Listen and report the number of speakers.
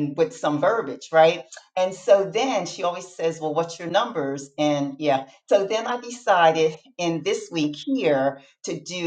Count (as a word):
one